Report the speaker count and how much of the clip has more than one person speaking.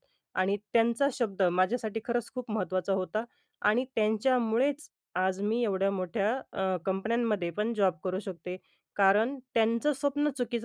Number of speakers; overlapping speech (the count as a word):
one, no overlap